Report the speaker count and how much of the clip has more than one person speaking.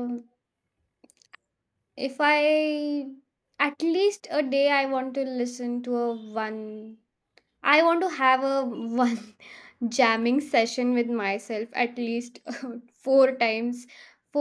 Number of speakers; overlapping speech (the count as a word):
one, no overlap